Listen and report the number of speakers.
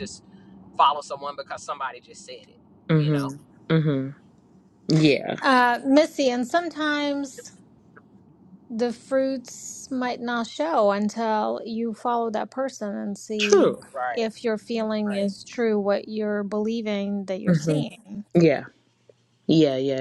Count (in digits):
3